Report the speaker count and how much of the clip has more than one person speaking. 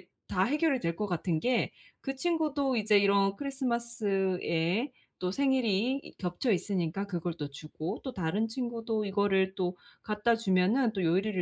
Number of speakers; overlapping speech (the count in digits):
1, no overlap